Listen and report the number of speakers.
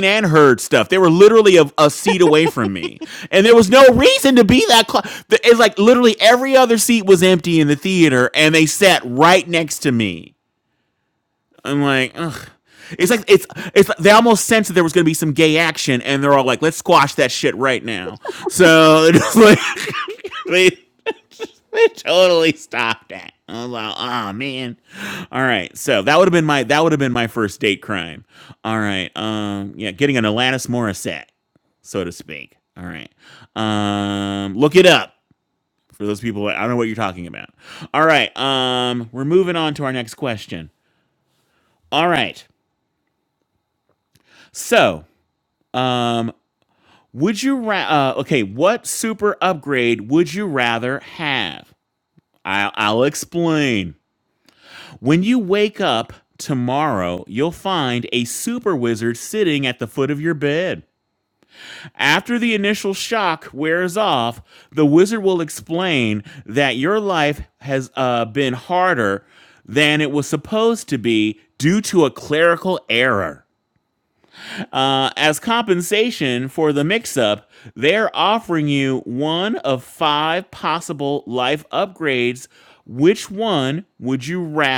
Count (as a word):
one